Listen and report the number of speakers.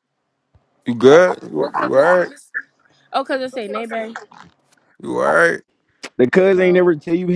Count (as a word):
three